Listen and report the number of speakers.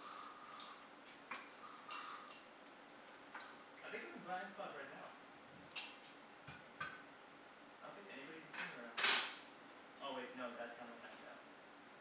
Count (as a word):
one